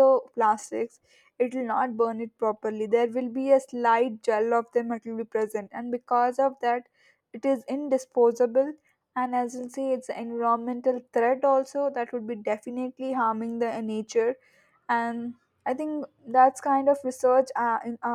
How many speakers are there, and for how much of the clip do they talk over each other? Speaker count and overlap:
1, no overlap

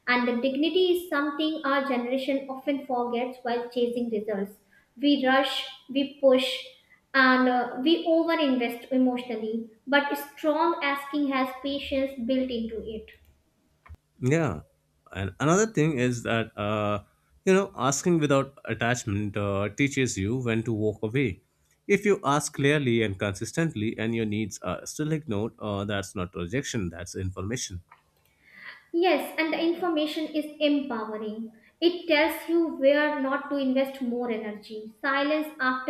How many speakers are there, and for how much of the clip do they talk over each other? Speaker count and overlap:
2, no overlap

